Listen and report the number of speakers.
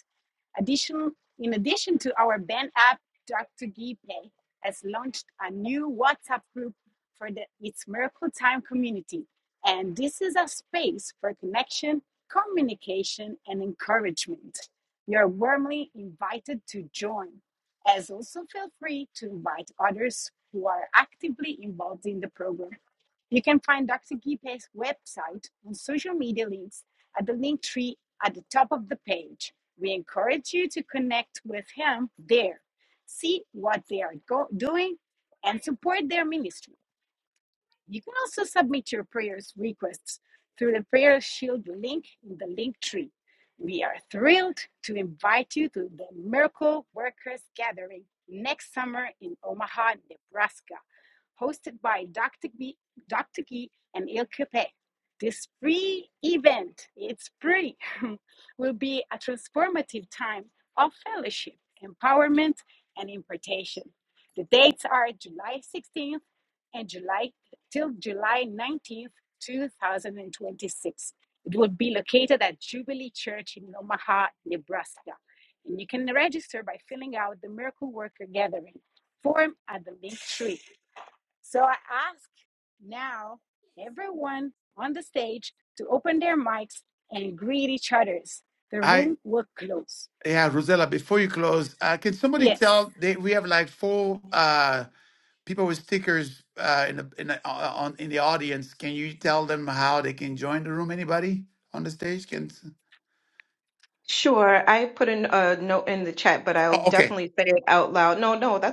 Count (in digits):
3